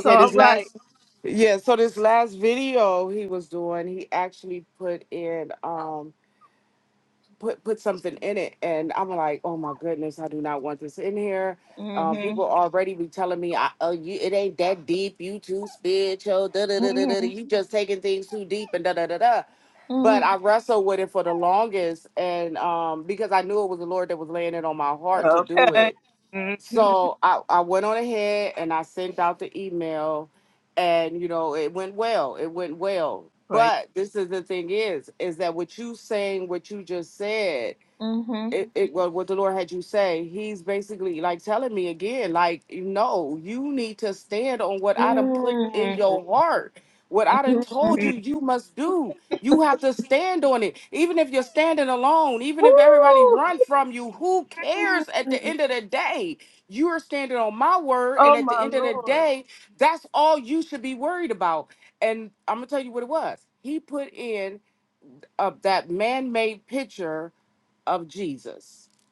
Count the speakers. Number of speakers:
two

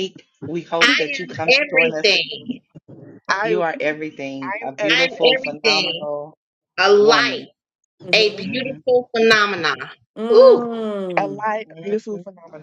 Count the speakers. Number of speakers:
four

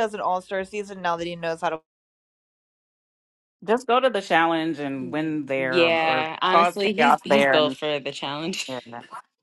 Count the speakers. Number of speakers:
three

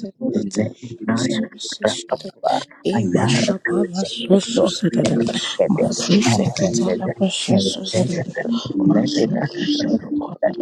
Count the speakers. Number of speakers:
three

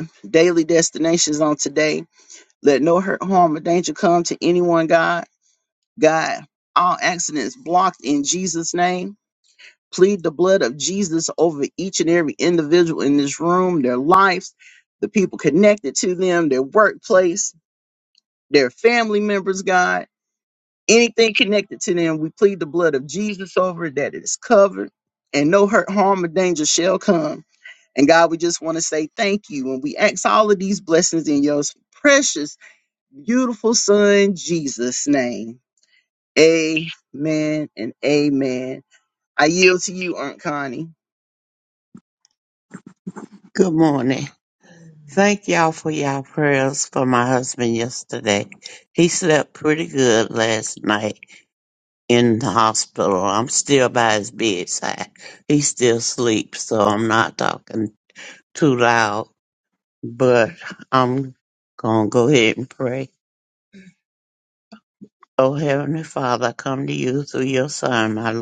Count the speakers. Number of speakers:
two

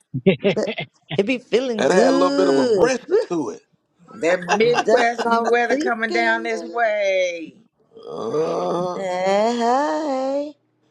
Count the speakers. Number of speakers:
three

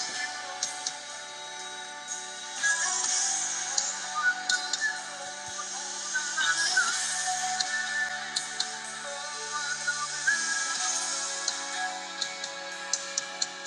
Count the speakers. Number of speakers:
zero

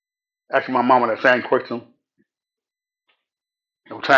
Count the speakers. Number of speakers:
one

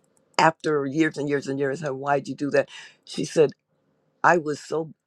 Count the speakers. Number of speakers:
one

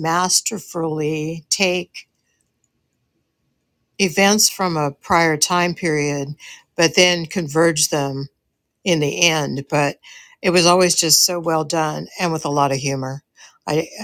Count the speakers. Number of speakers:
one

